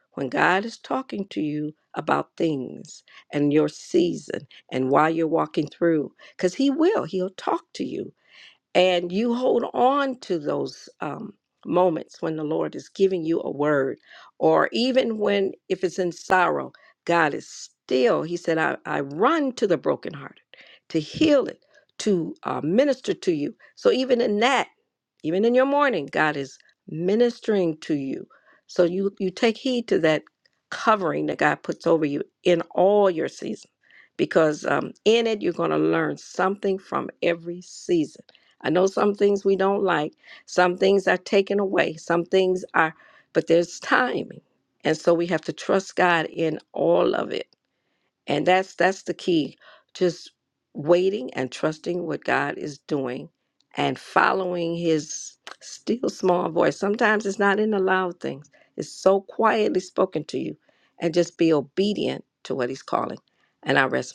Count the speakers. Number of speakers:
1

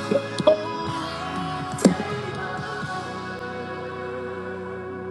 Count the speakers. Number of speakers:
0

